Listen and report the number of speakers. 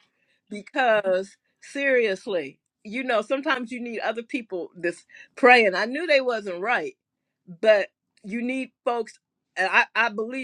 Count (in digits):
1